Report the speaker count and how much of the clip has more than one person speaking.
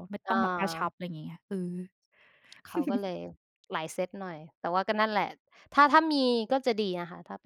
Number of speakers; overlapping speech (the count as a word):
two, about 8%